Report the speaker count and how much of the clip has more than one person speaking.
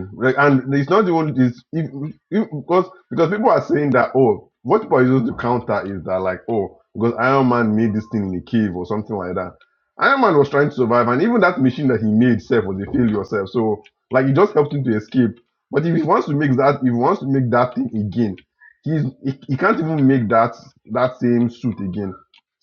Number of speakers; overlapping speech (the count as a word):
one, no overlap